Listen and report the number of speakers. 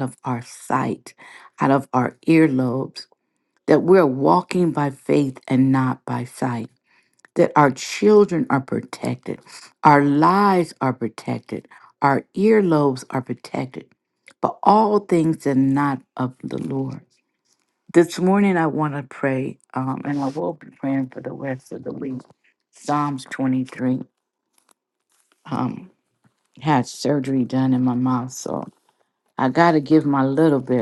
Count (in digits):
1